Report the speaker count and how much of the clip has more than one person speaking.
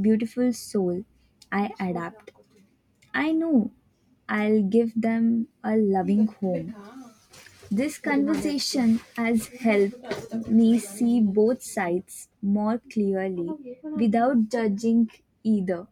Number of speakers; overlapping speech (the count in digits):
1, no overlap